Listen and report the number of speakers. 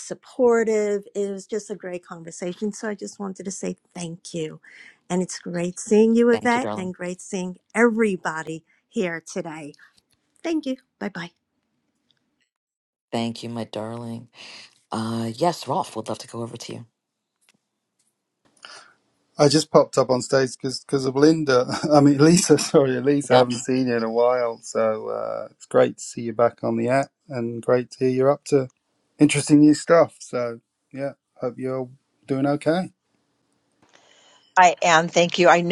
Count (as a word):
four